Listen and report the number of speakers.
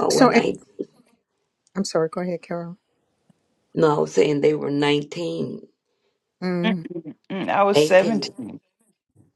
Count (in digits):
3